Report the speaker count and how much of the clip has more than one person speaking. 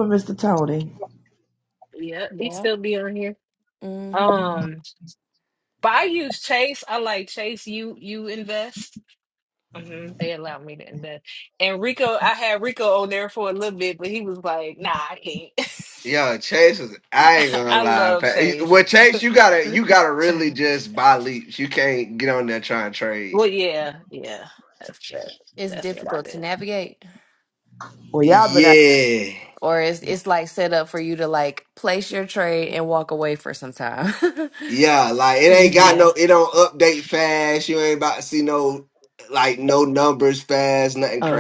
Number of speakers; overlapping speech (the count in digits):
4, about 9%